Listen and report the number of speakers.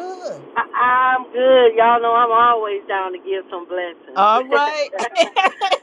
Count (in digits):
2